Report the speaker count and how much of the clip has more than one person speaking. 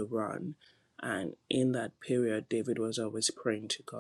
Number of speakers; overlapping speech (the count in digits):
1, no overlap